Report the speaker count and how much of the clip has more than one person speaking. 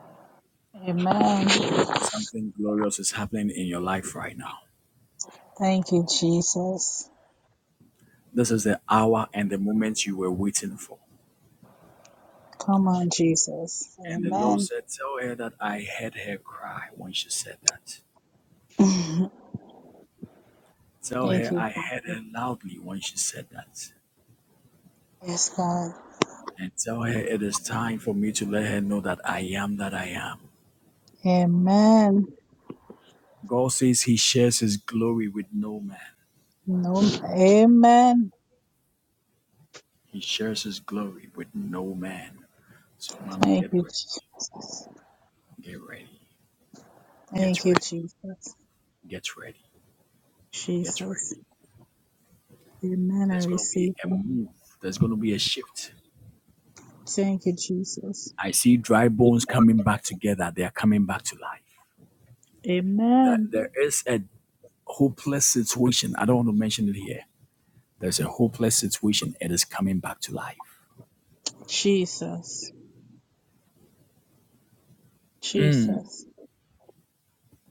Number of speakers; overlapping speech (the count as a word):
two, about 5%